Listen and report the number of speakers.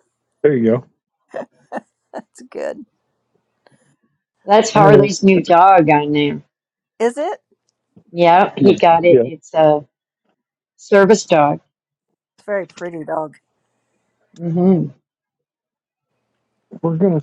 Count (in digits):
3